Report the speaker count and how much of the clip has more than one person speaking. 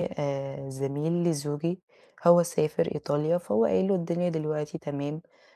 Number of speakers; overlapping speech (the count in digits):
1, no overlap